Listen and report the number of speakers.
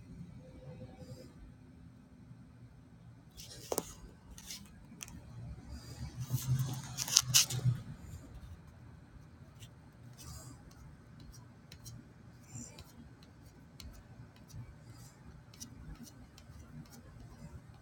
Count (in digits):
0